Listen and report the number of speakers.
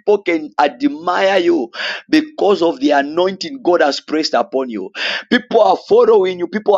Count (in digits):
1